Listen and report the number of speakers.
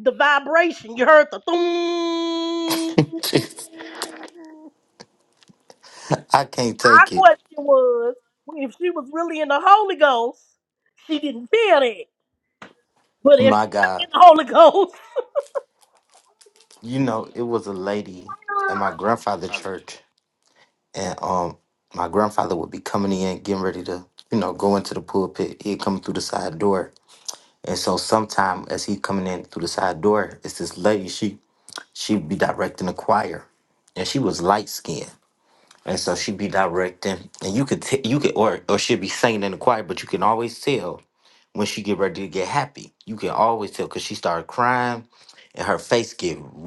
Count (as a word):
two